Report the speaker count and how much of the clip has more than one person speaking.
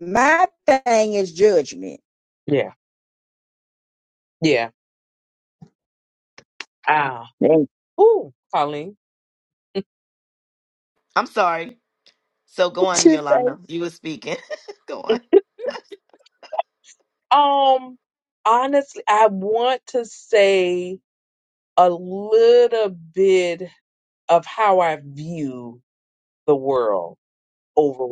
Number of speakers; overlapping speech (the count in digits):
3, about 1%